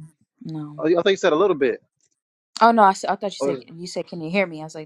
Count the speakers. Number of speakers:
2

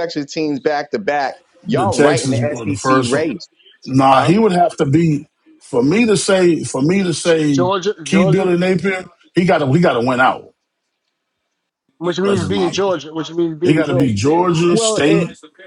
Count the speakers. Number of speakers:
3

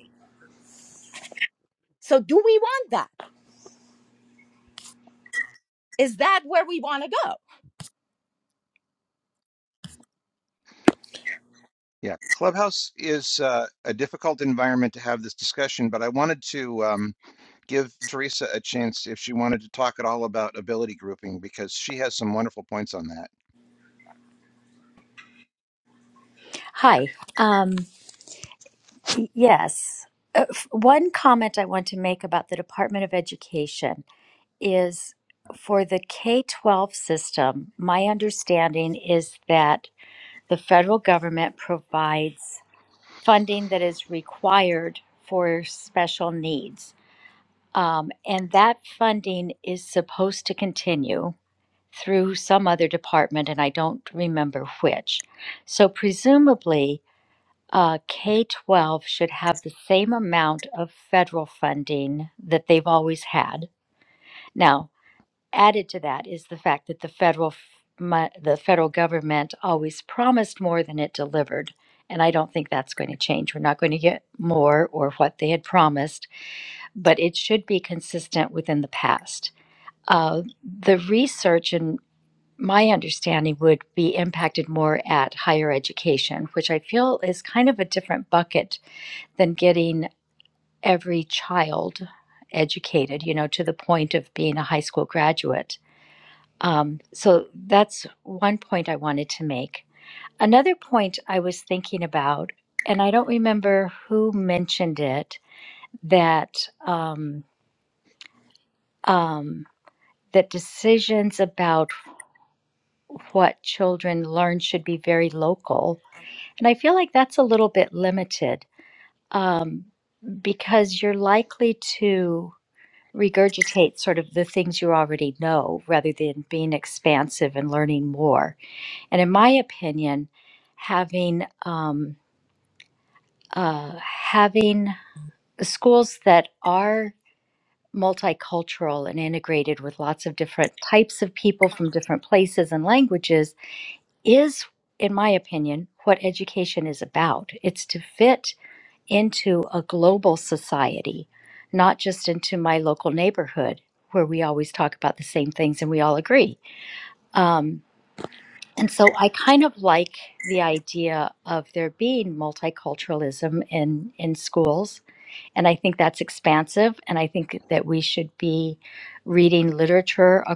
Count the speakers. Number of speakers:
3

